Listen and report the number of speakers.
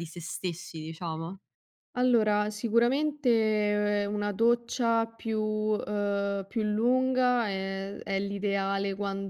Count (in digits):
2